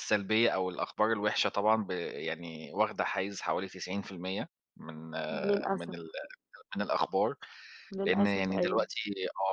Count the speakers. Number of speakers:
2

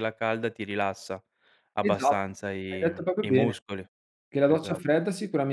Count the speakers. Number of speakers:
2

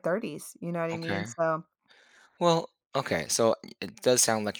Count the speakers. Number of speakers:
2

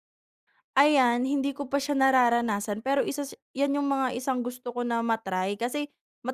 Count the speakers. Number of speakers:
1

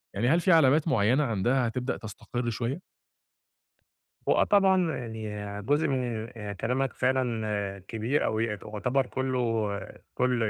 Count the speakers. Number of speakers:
2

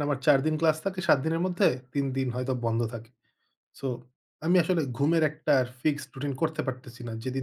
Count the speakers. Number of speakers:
1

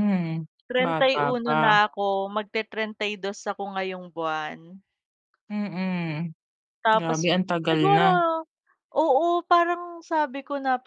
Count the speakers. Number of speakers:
2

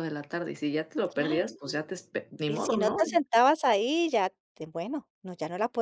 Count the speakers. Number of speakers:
2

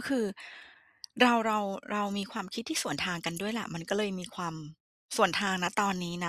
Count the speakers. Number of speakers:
1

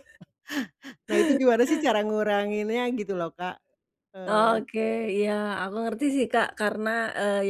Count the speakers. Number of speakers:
2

